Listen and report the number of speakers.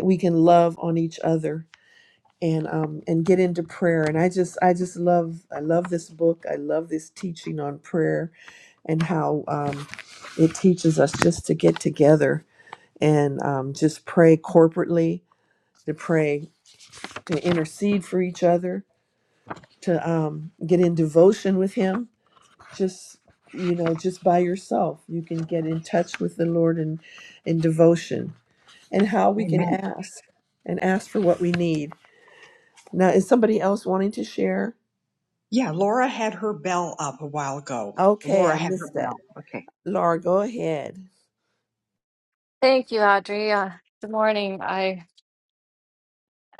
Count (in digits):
3